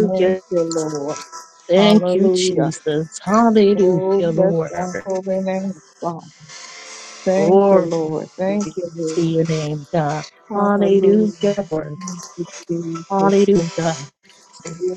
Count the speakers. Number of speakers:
two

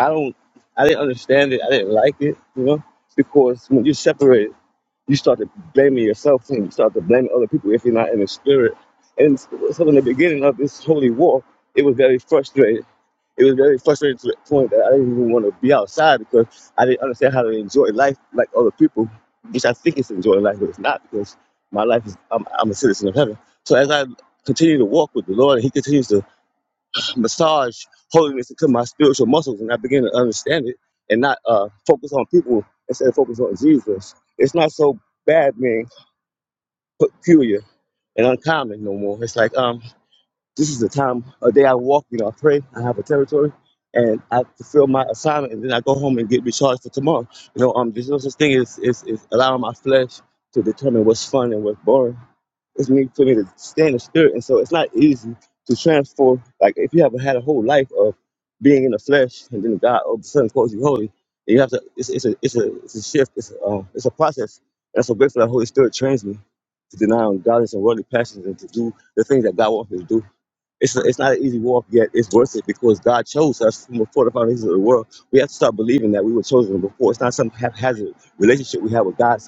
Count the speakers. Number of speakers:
one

